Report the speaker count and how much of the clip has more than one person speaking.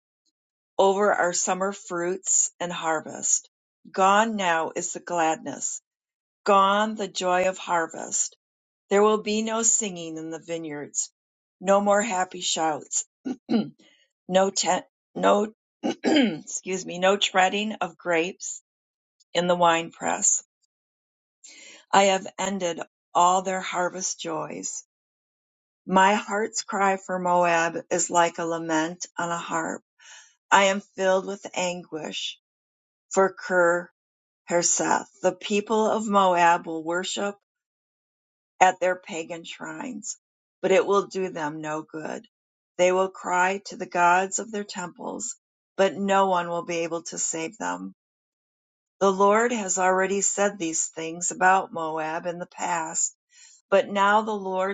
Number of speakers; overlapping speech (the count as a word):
one, no overlap